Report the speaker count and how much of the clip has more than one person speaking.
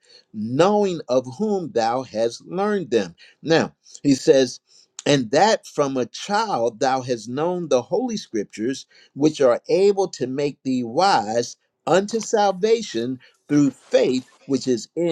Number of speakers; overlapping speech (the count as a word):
one, no overlap